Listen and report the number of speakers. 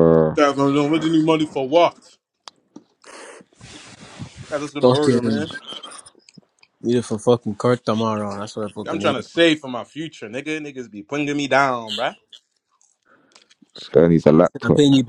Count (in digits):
3